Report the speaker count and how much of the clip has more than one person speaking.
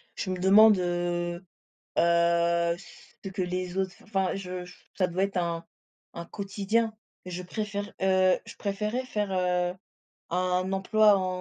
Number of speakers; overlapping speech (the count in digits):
1, no overlap